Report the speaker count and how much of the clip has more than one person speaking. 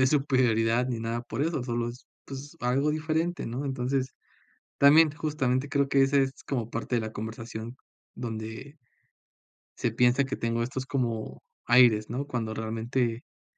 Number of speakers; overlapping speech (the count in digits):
1, no overlap